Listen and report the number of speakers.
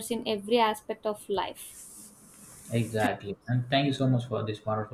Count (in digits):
2